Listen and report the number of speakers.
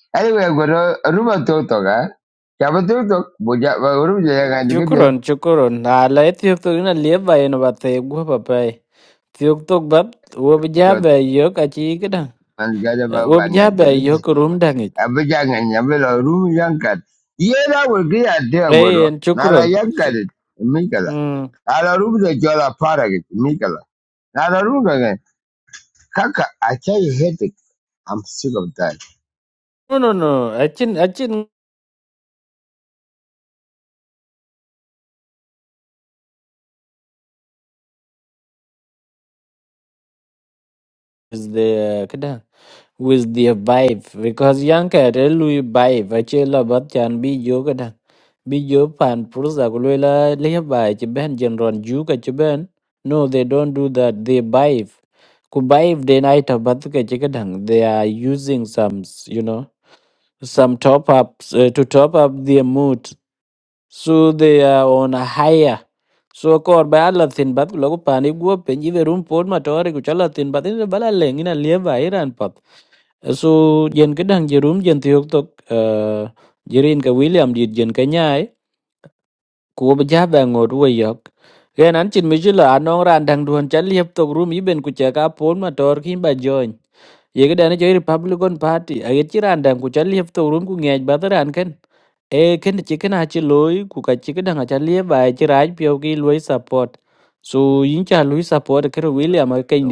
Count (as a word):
two